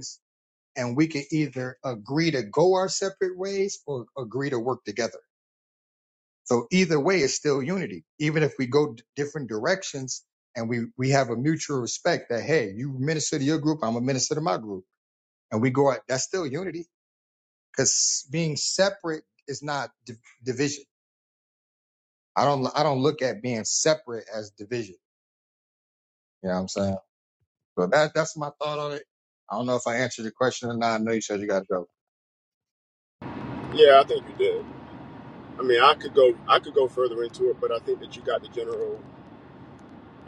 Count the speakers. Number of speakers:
2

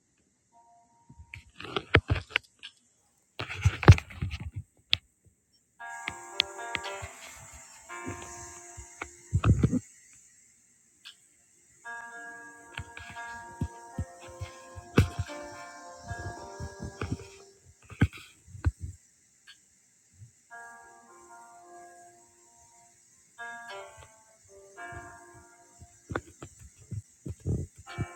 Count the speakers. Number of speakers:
0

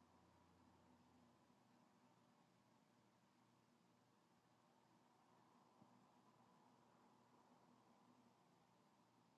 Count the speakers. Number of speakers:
0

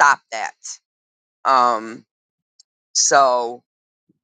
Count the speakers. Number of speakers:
1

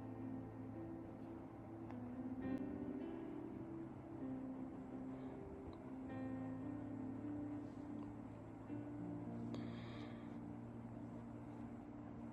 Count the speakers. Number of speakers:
0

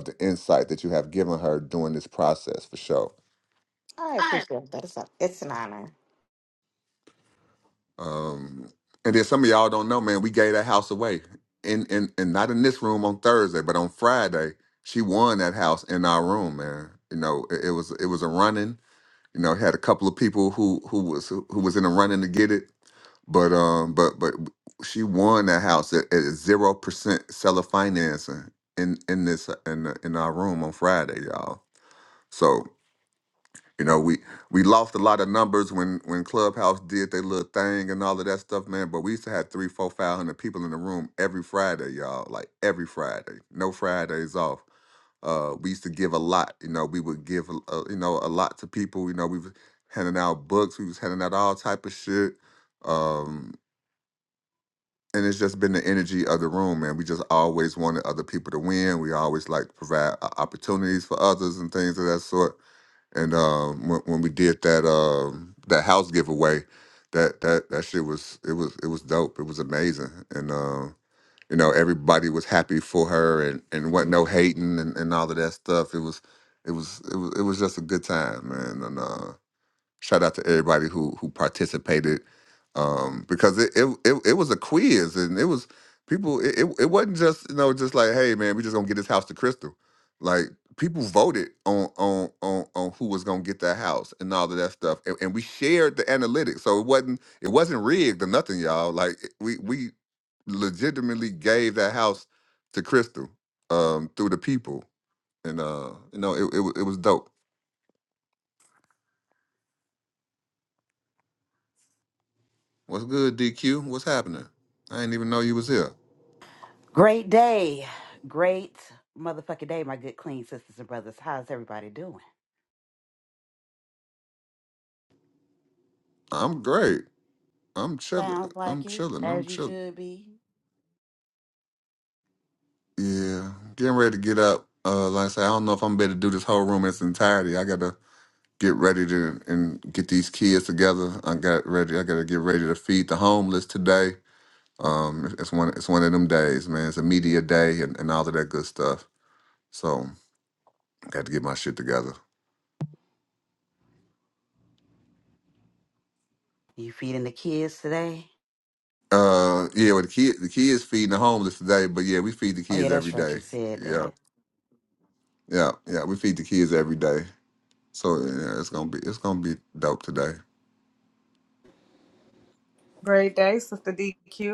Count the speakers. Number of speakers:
4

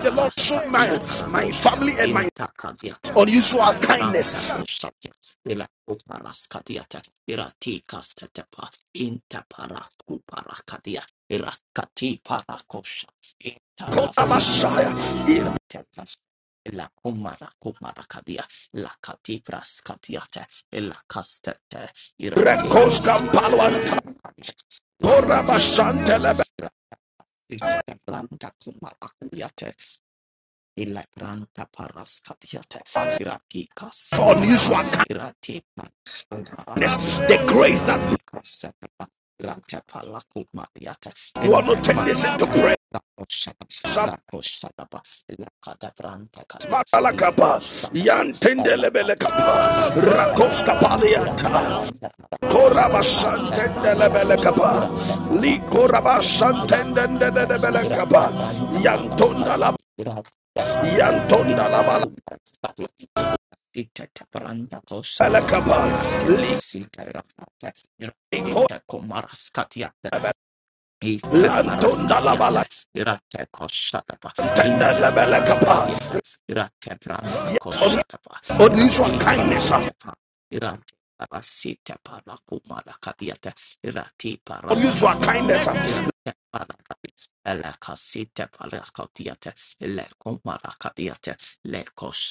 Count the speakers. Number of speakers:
2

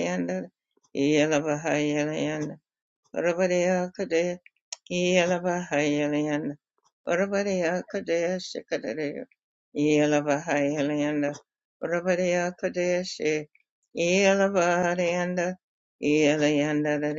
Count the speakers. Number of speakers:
1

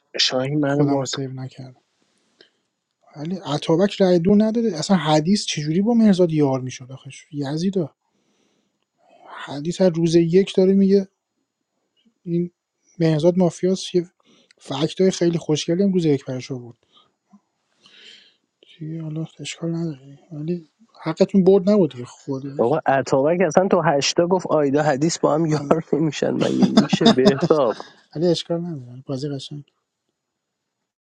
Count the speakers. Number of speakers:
2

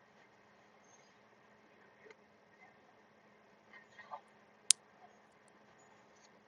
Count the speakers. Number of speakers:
0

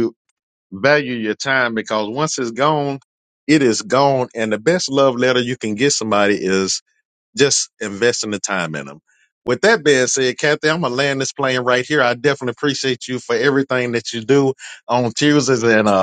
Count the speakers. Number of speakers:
1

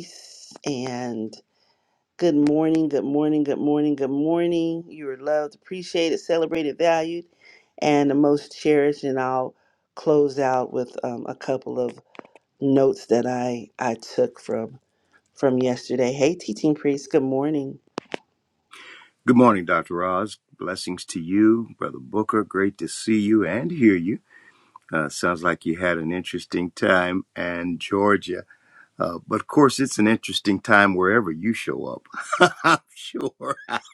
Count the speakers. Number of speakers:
2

